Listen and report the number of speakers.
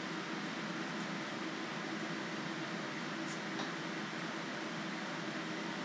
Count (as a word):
zero